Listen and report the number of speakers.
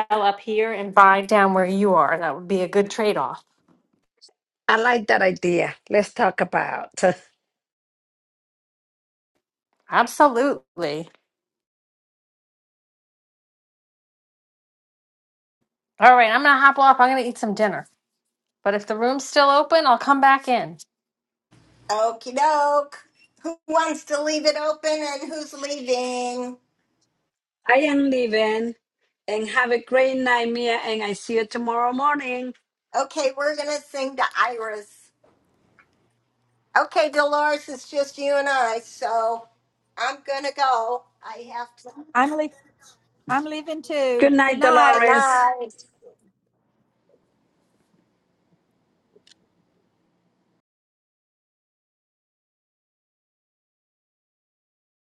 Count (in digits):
4